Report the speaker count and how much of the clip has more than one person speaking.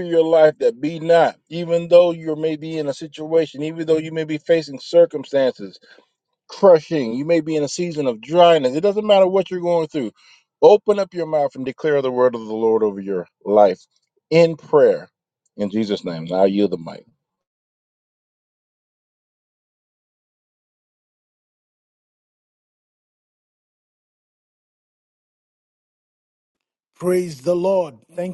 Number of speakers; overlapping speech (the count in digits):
2, no overlap